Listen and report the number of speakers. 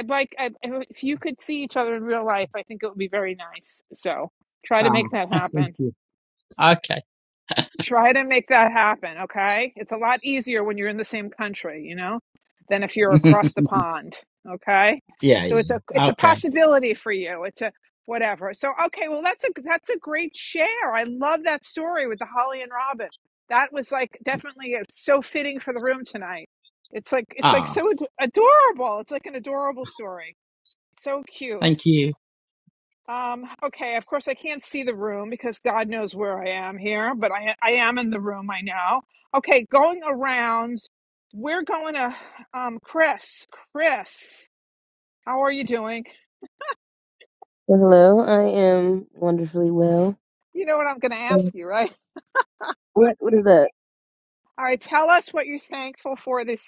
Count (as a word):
three